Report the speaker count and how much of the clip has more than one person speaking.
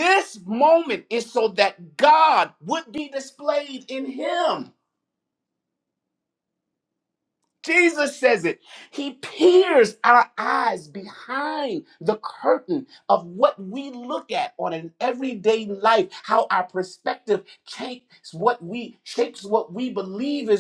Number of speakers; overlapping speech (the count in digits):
1, no overlap